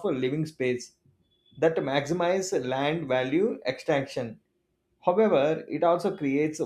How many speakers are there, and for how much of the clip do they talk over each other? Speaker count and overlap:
1, no overlap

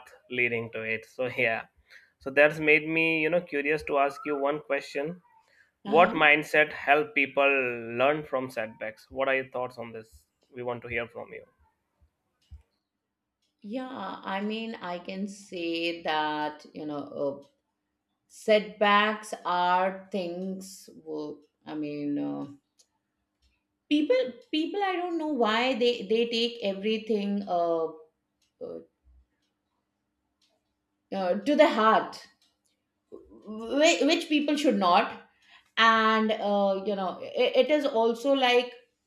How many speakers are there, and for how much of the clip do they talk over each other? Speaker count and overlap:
2, about 1%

